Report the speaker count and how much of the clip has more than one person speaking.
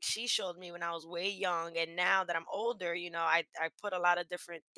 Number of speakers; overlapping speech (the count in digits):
1, no overlap